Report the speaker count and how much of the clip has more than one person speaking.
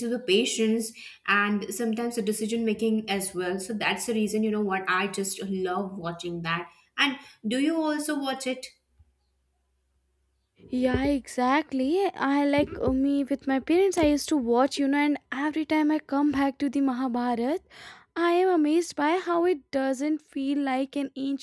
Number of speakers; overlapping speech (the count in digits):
2, no overlap